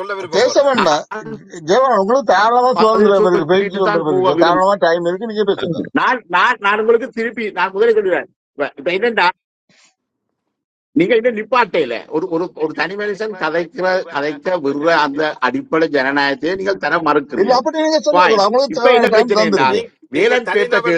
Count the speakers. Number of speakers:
3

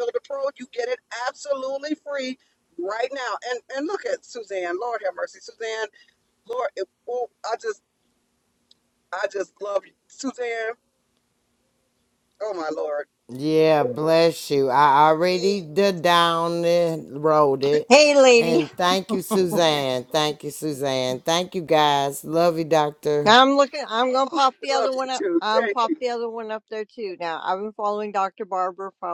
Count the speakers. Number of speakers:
3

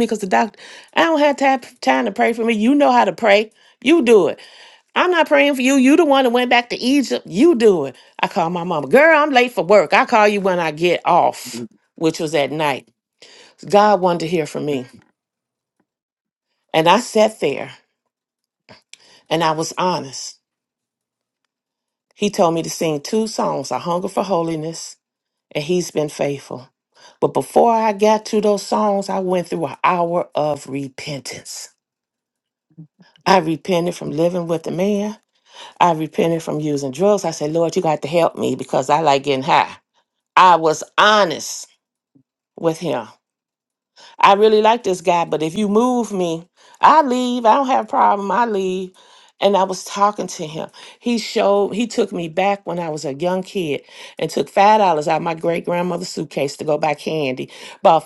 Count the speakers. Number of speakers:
1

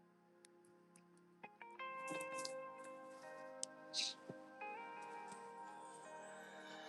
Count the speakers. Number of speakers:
0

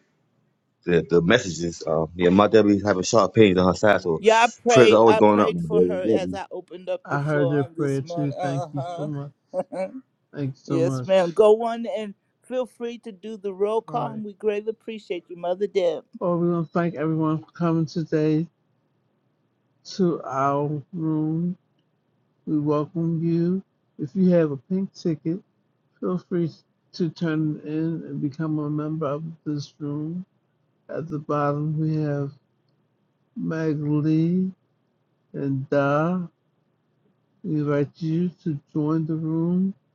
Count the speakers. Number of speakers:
3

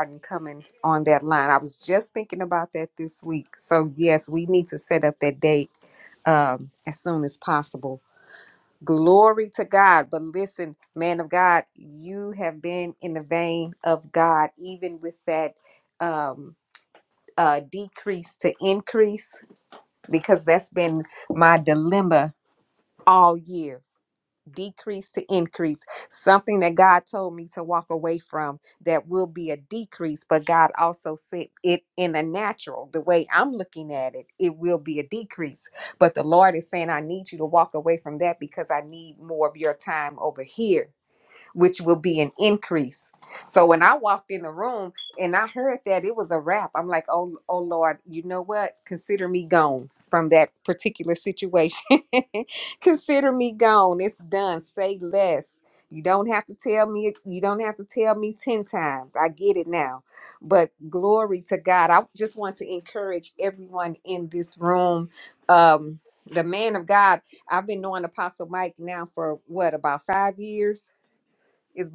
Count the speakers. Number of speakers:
1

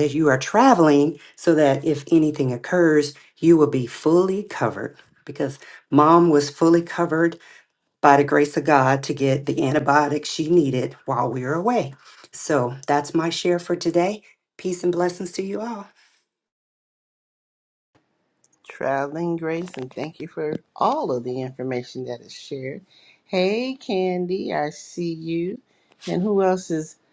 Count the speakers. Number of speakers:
2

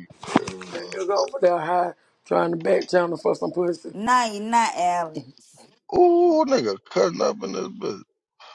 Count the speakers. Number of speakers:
3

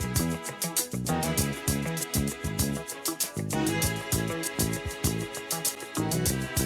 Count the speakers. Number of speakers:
0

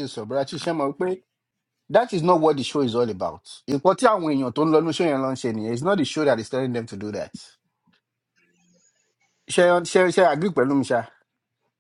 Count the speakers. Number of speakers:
1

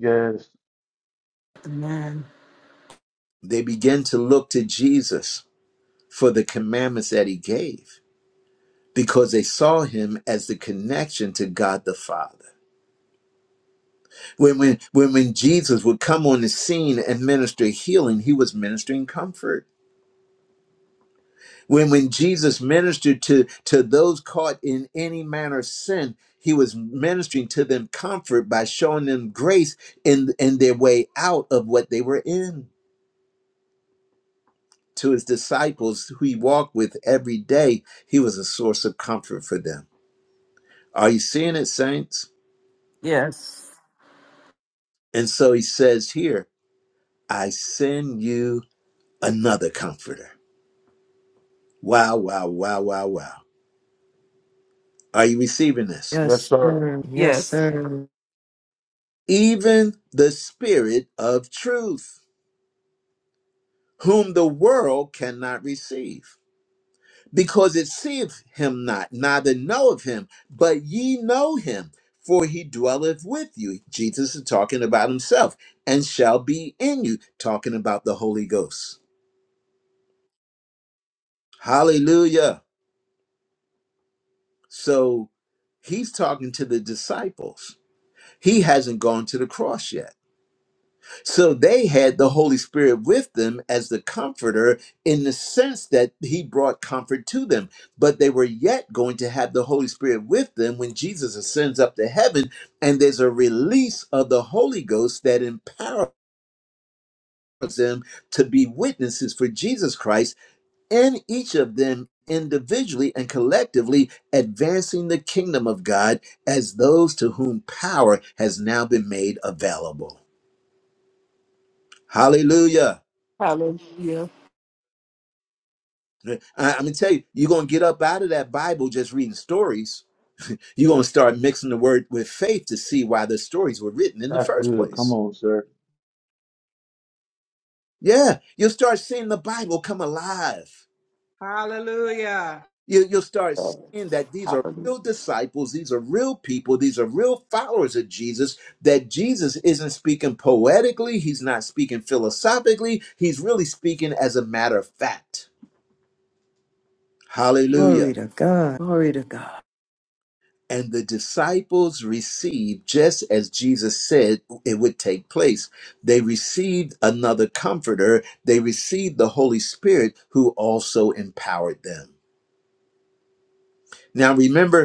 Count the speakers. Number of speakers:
5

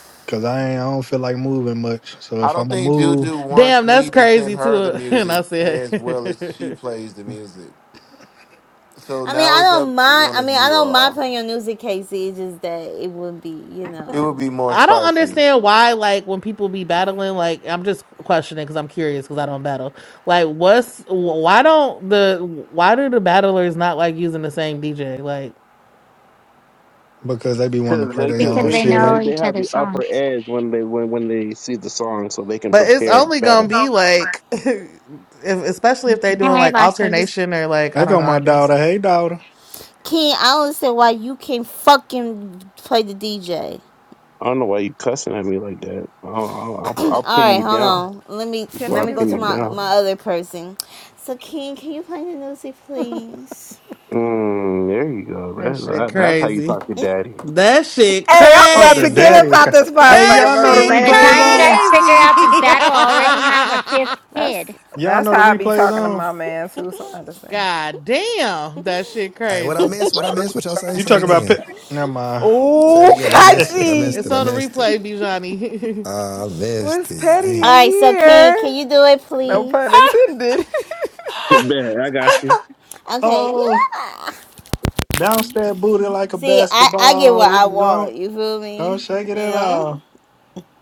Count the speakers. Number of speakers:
8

